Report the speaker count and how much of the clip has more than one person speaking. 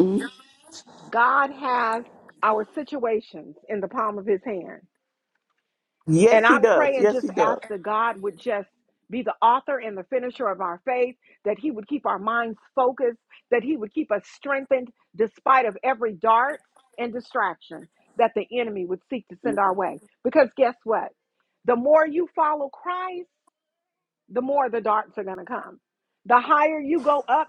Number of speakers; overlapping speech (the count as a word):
two, about 6%